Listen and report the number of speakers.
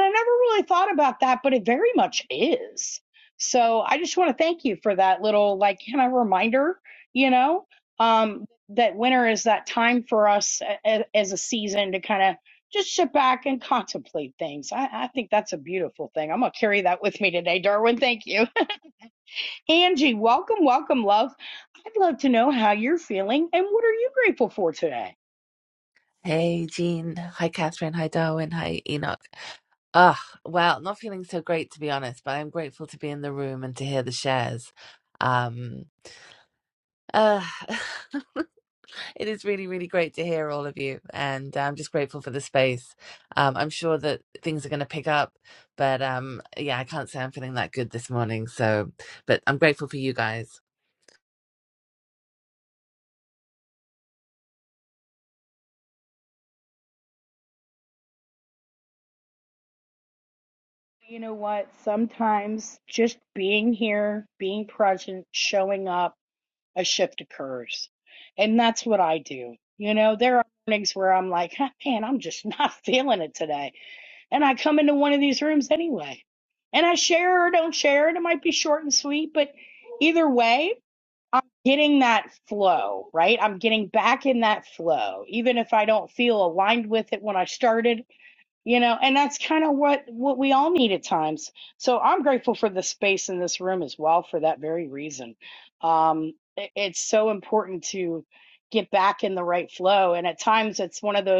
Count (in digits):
2